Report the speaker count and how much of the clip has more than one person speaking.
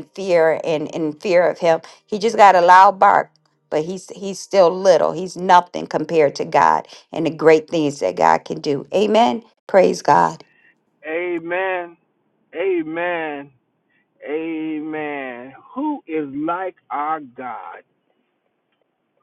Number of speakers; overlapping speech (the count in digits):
2, no overlap